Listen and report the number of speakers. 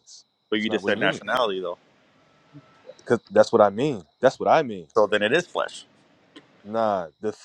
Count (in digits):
2